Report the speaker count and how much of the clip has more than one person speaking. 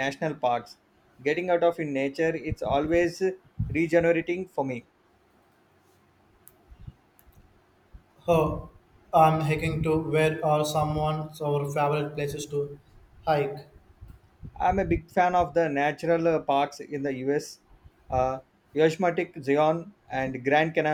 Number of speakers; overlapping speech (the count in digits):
2, no overlap